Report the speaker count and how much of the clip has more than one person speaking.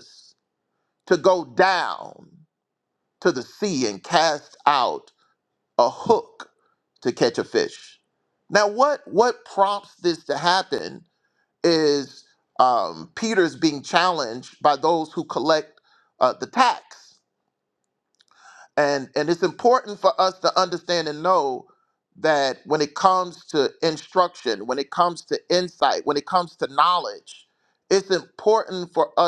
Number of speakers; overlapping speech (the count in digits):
1, no overlap